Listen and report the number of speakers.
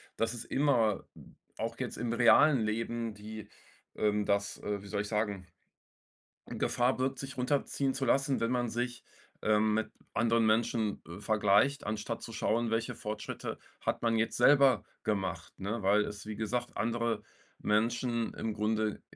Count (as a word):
one